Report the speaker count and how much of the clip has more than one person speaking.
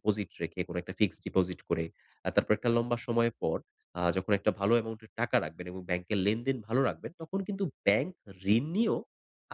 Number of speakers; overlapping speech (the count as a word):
one, no overlap